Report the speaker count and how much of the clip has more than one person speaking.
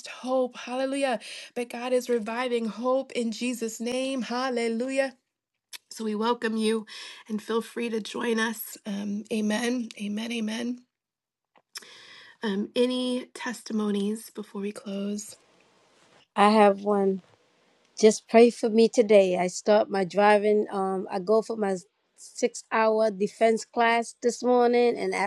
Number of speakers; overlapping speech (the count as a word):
two, no overlap